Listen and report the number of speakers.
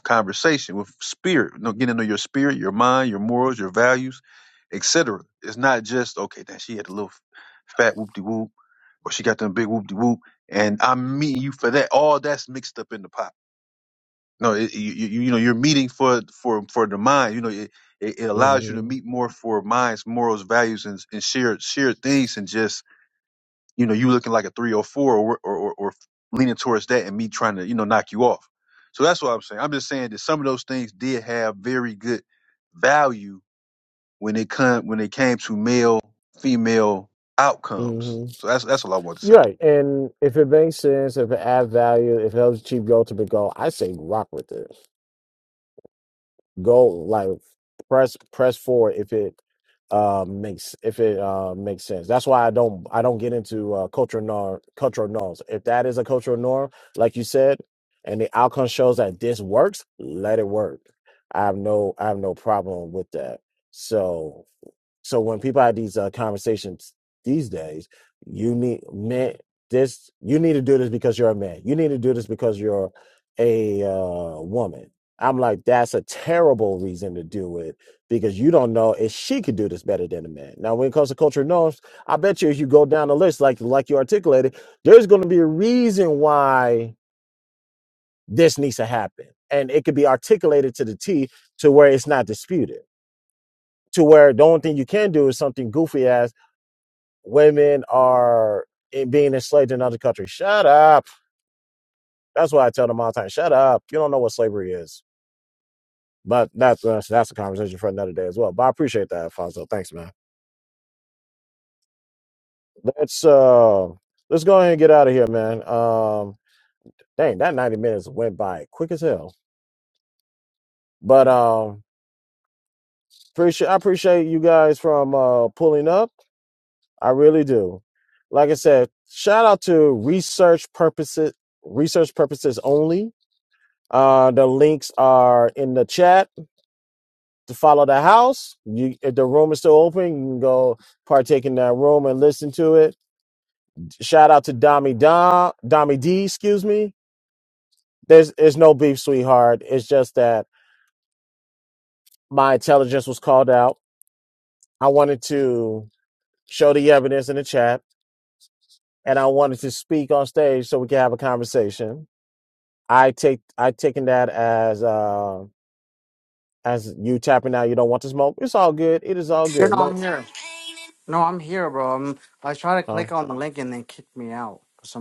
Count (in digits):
3